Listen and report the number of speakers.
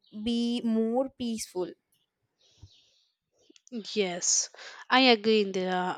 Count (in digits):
2